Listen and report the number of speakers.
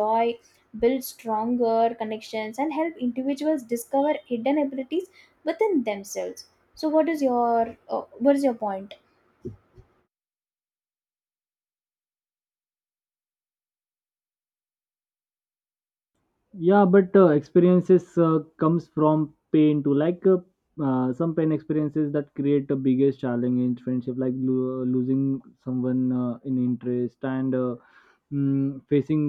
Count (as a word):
two